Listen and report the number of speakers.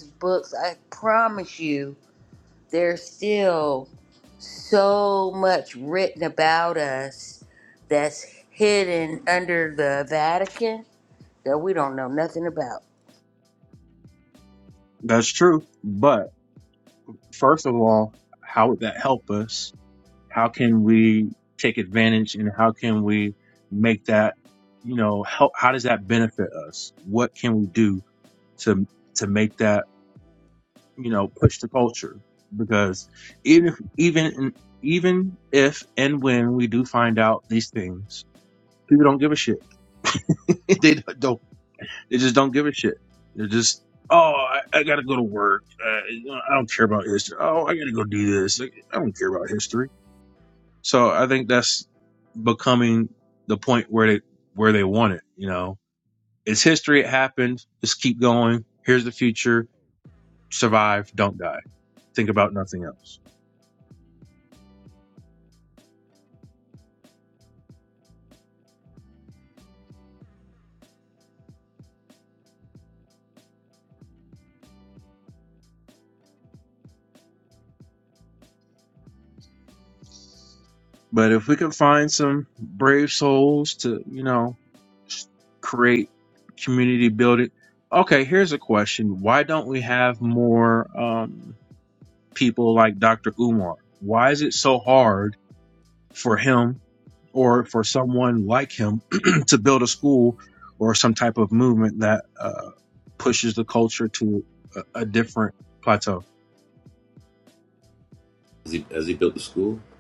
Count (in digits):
3